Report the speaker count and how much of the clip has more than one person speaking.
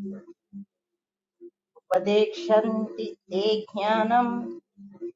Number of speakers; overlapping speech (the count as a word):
one, no overlap